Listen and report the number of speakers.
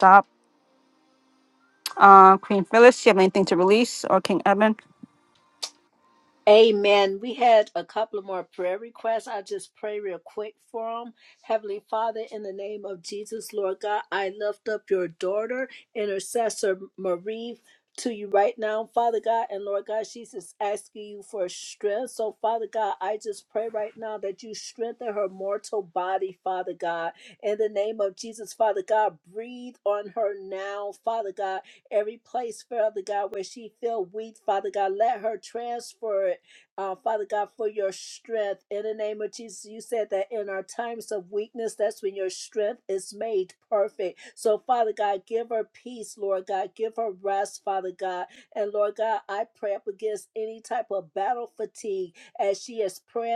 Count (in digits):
2